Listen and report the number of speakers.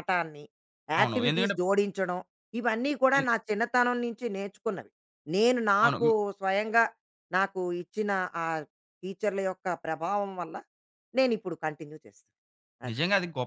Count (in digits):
2